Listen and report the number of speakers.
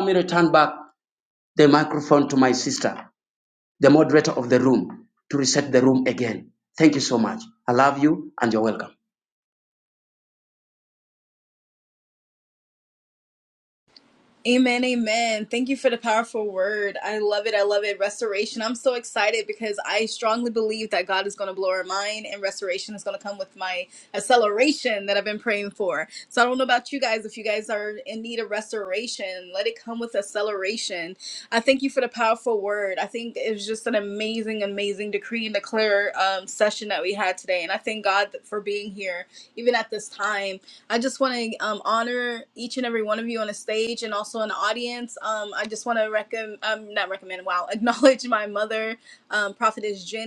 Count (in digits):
2